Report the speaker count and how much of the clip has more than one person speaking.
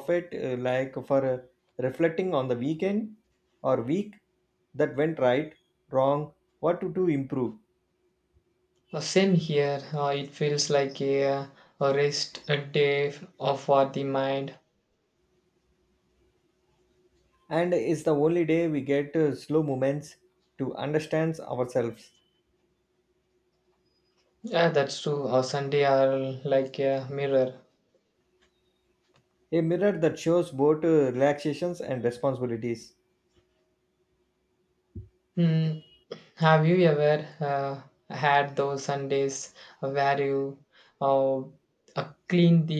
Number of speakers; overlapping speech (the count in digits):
2, no overlap